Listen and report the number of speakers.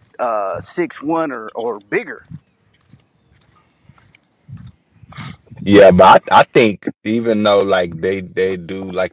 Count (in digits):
2